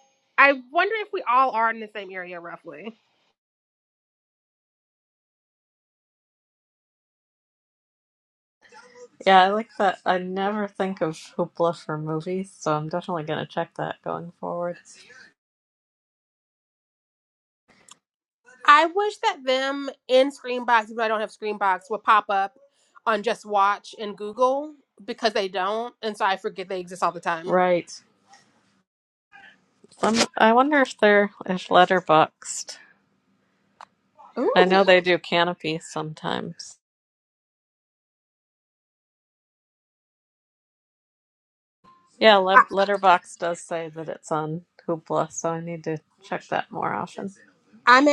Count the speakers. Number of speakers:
two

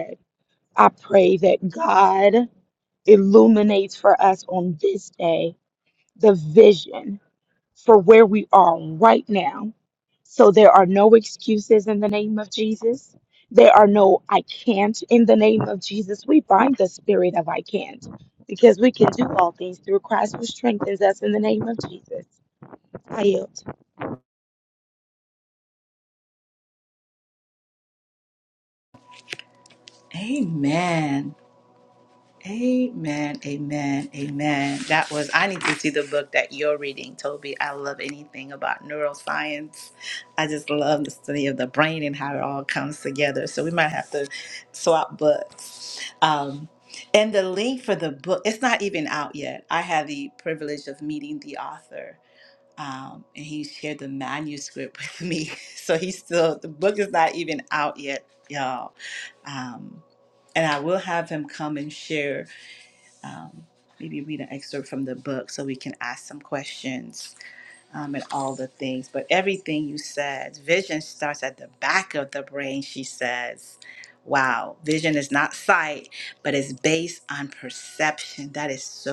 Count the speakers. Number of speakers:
two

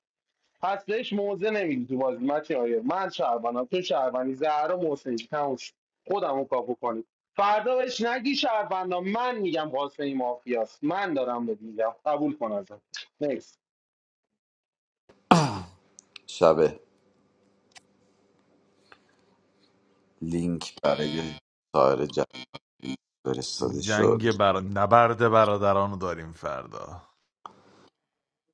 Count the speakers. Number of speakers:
three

